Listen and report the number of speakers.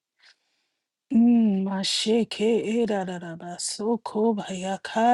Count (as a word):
one